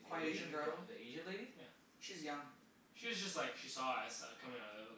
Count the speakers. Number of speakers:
three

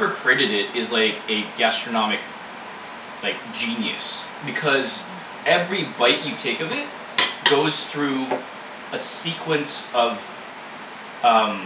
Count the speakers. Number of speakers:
one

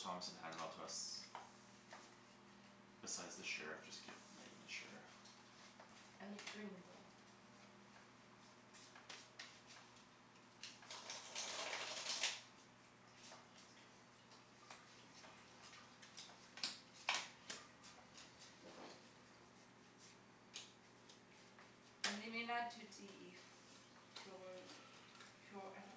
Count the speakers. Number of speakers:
two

